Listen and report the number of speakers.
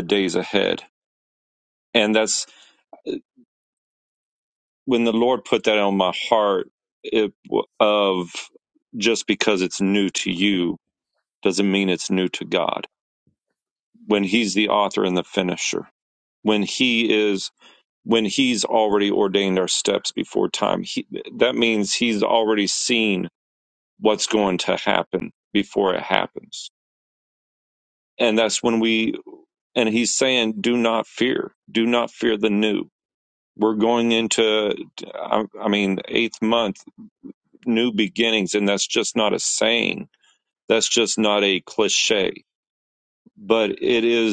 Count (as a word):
one